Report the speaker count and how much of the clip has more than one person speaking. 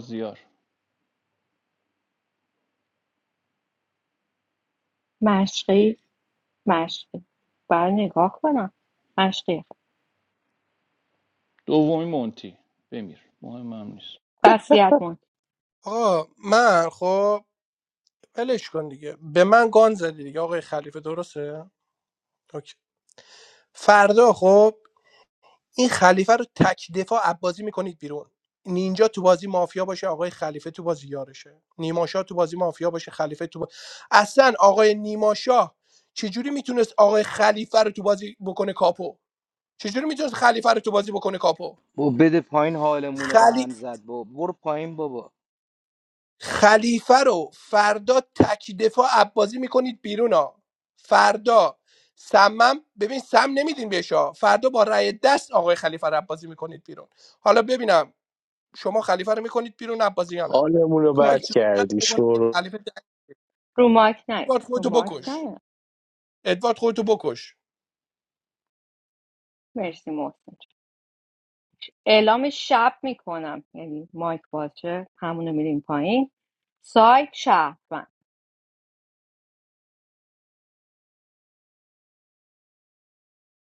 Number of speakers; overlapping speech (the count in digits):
5, about 3%